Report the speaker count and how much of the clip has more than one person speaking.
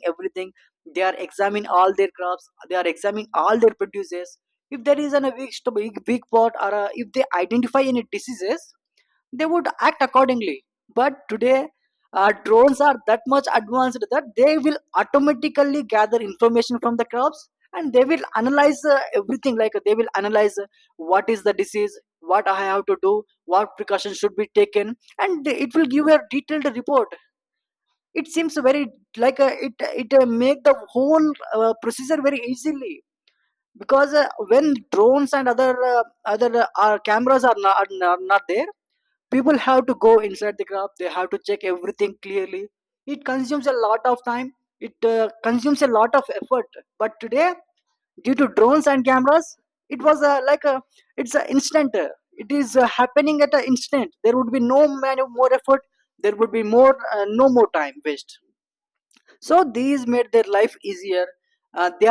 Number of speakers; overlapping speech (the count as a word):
one, no overlap